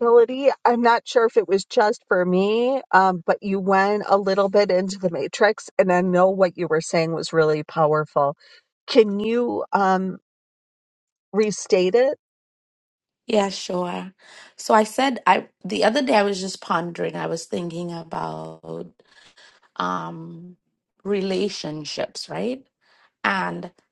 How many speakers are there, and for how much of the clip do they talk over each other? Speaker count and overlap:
2, no overlap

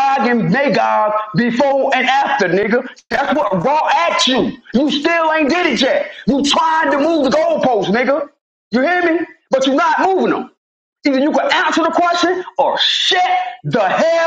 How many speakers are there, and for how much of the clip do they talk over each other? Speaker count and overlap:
1, no overlap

